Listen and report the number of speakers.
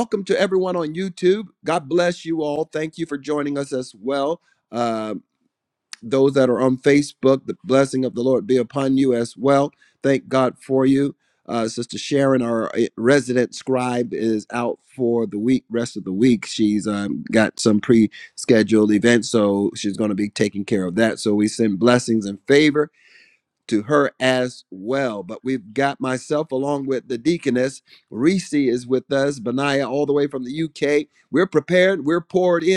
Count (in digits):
1